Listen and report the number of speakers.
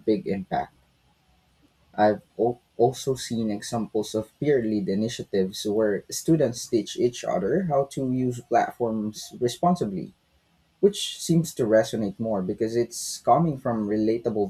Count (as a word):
one